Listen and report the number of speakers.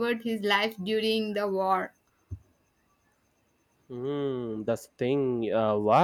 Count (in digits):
2